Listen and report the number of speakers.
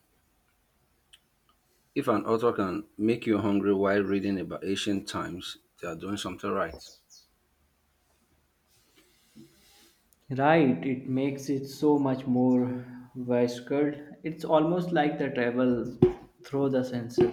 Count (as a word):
two